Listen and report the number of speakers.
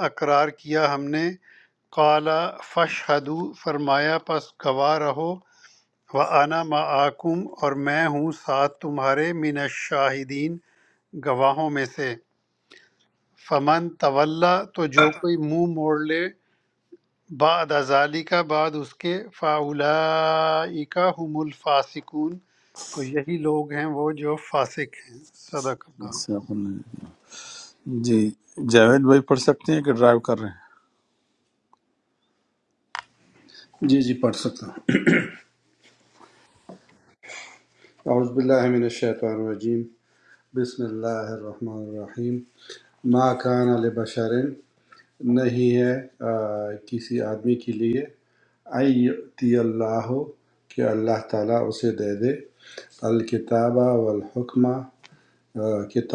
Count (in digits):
3